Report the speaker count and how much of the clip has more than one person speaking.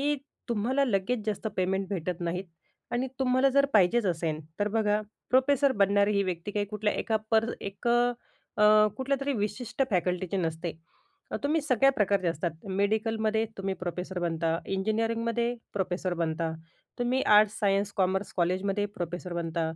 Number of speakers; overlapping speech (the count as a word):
one, no overlap